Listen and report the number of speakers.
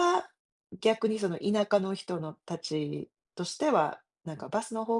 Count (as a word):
one